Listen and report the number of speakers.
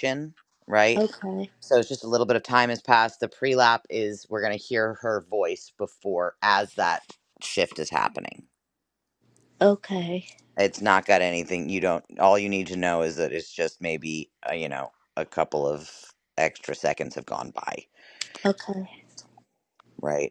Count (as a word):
two